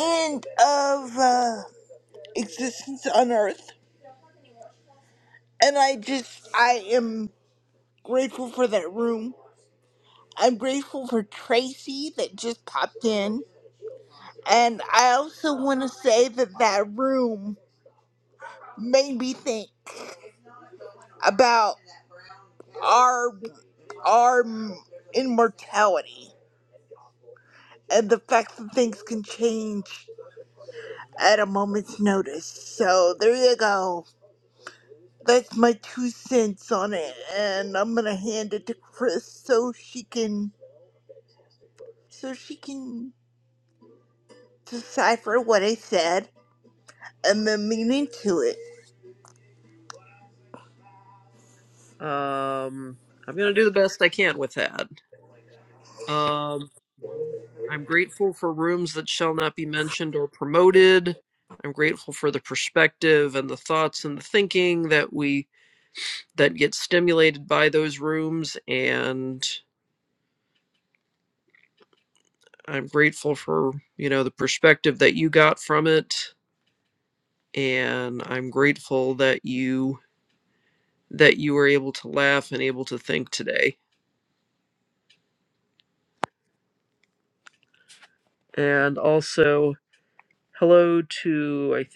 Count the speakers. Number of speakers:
2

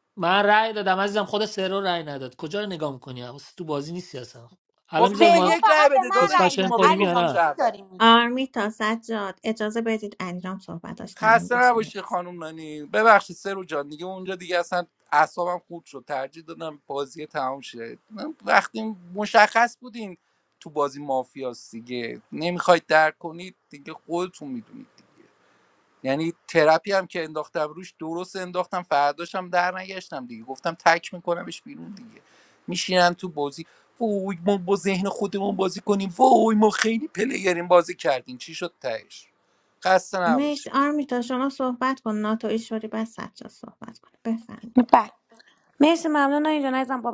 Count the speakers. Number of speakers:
4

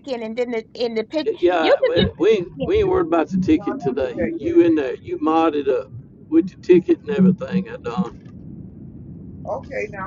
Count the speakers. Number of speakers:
3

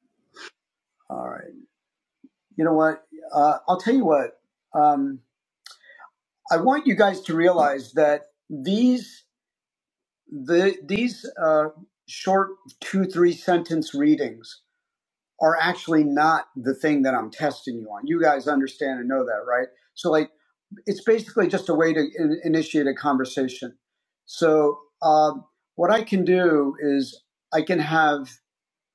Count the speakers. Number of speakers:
1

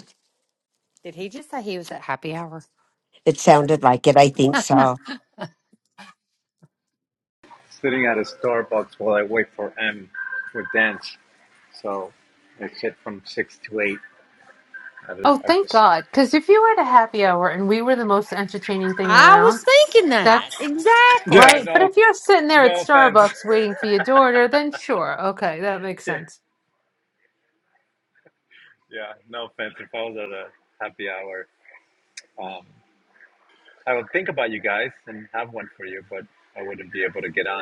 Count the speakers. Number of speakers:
4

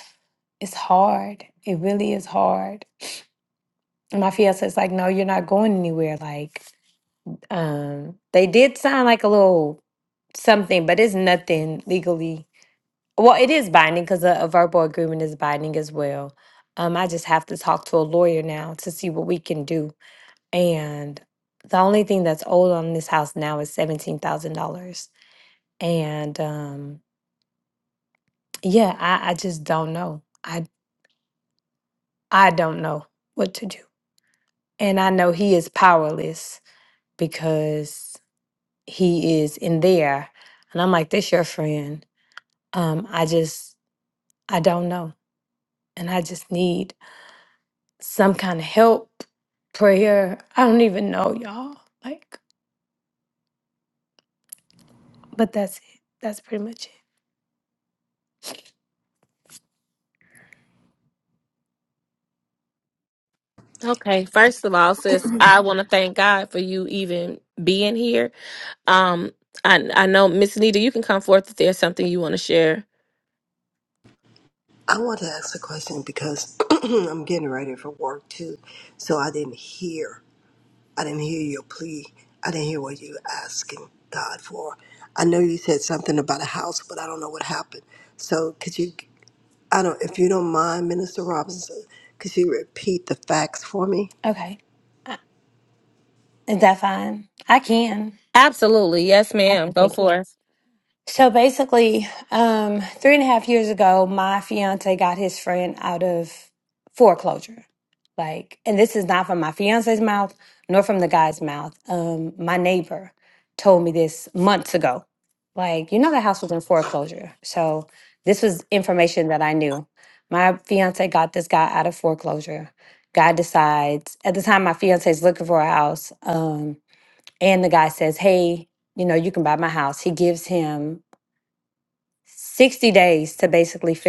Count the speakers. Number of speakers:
3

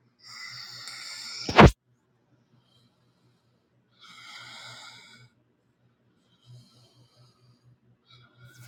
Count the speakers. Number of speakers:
0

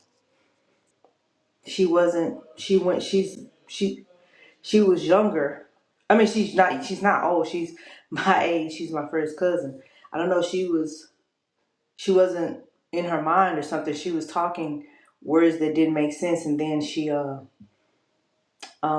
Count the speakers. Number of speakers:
1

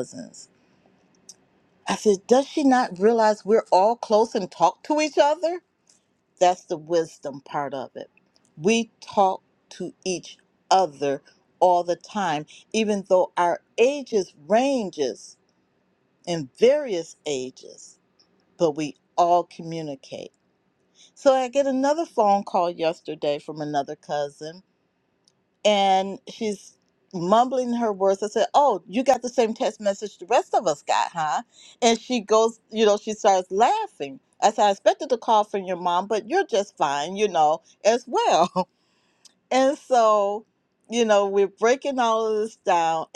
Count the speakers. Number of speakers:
1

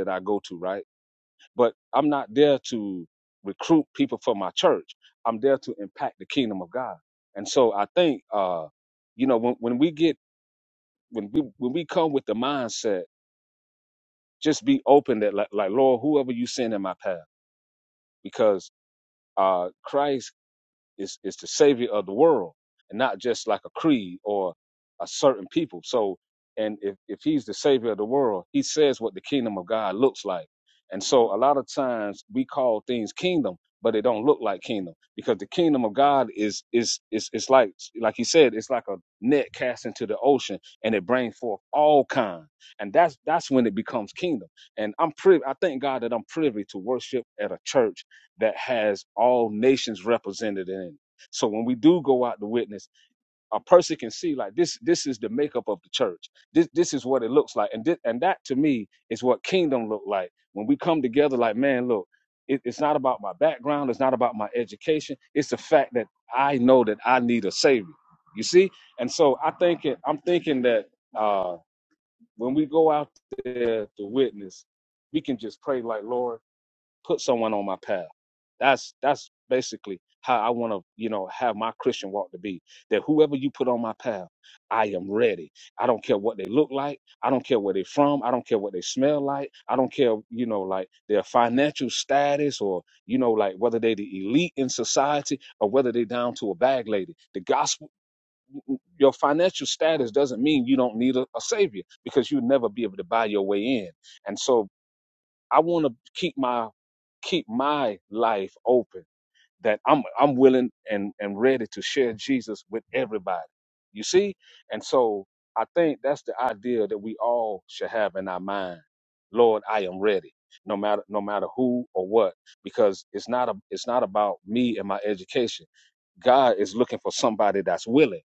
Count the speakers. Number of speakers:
1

